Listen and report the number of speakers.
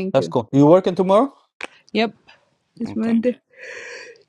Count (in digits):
2